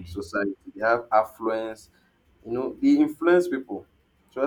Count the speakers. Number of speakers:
1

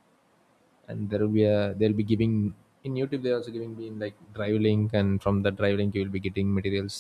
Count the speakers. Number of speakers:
1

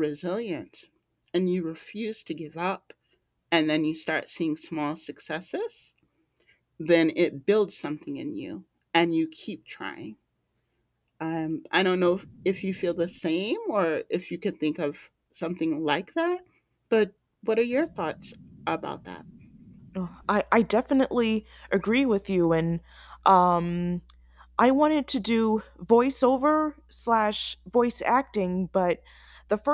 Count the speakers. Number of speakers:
2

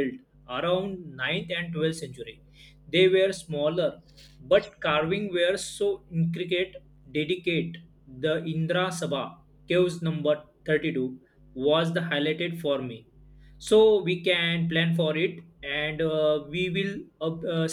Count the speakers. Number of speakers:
1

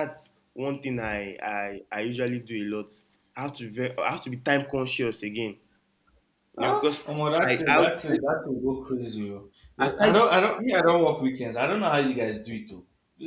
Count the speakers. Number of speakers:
2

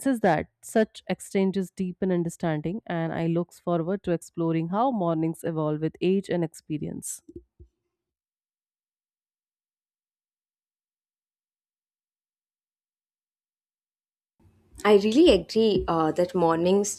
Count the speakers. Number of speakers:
2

